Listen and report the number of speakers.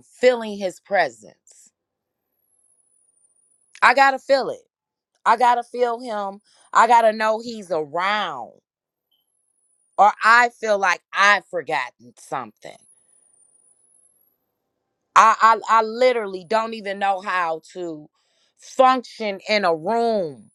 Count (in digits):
1